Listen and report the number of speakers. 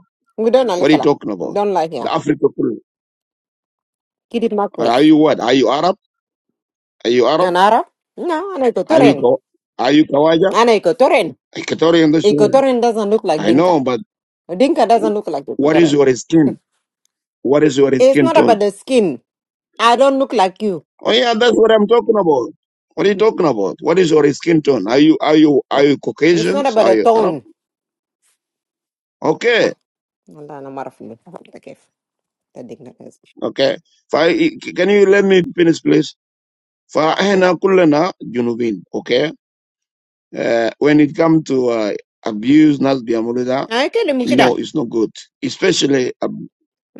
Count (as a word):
two